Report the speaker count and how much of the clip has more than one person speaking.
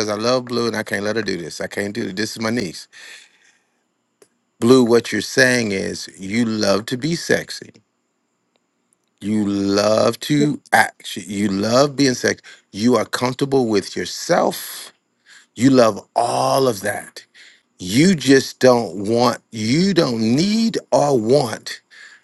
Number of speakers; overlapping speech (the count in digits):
1, no overlap